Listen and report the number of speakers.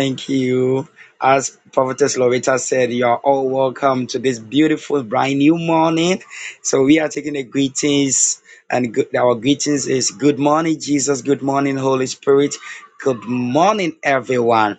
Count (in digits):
1